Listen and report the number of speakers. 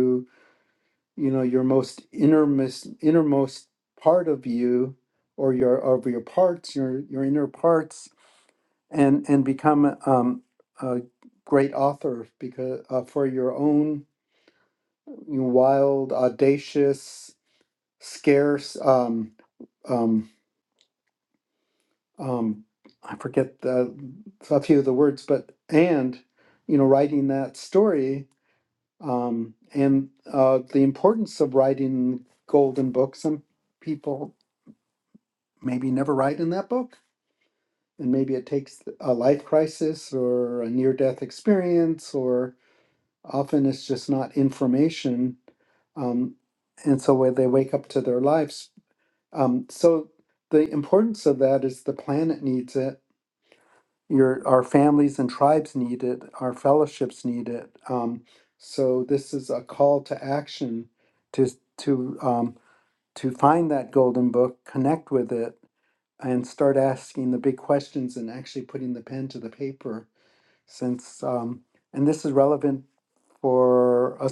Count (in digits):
1